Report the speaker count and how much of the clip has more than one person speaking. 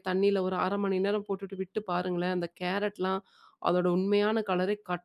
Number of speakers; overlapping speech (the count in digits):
1, no overlap